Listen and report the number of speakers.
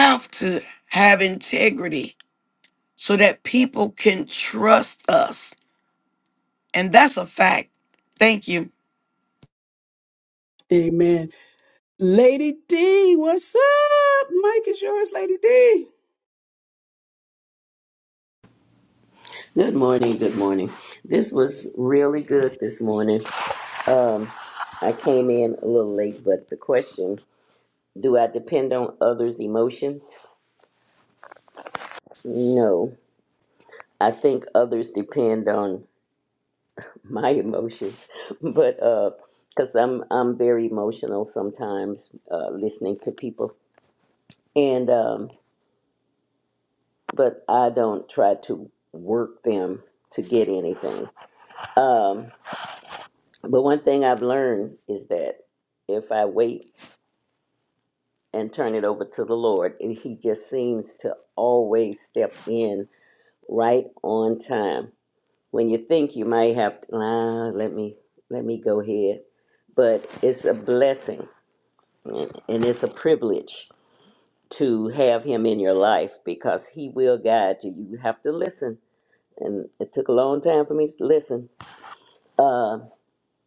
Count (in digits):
3